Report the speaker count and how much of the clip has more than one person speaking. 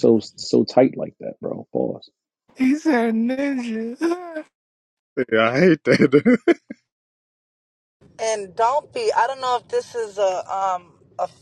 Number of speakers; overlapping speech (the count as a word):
four, no overlap